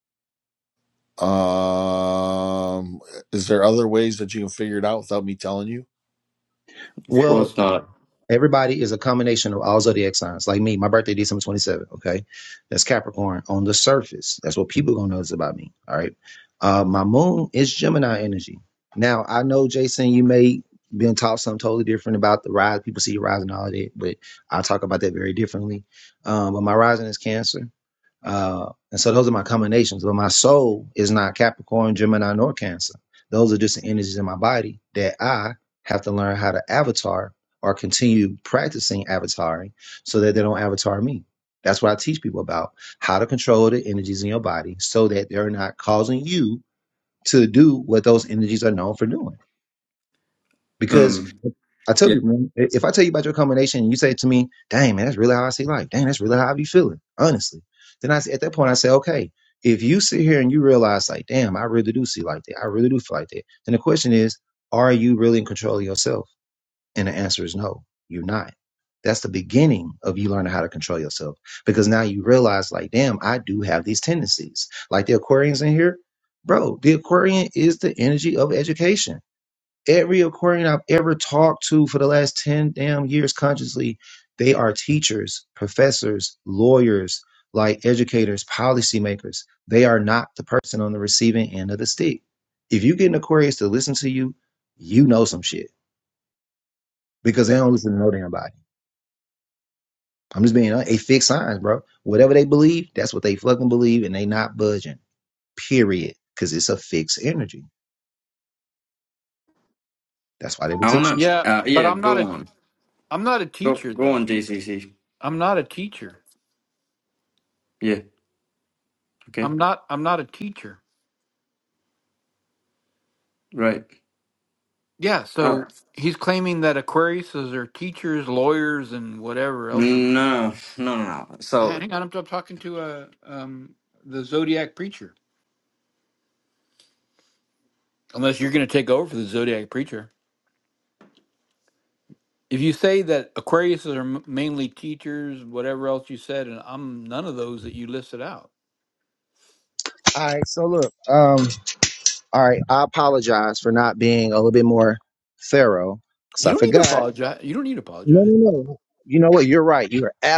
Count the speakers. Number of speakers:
4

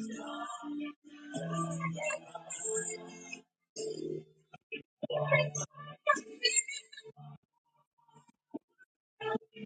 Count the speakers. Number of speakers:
0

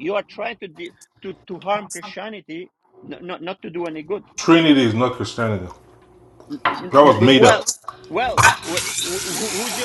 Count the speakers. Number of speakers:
2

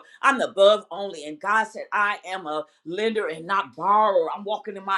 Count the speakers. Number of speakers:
1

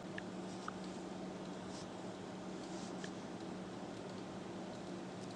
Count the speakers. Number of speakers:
0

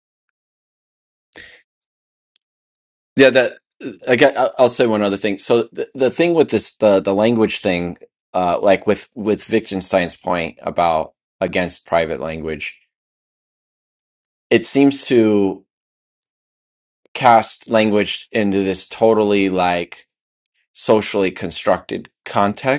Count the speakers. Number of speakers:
1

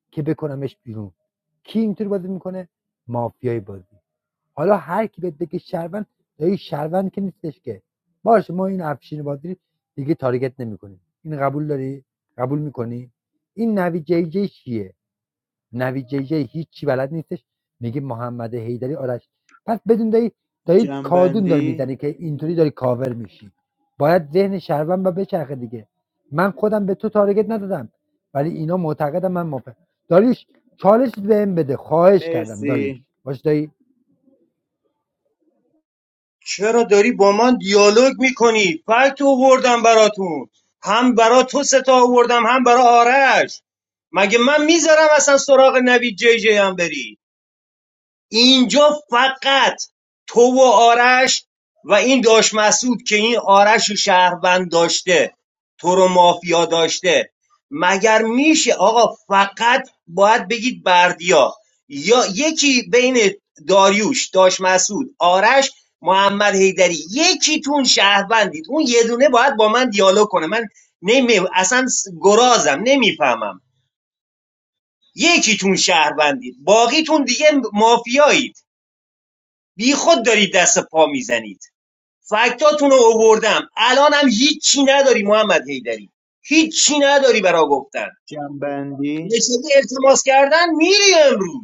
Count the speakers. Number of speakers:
3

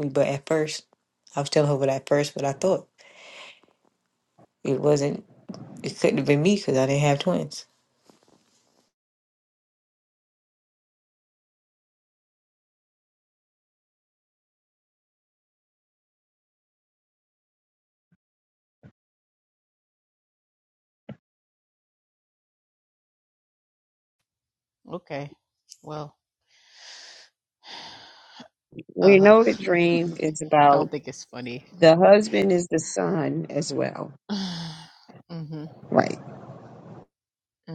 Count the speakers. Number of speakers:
3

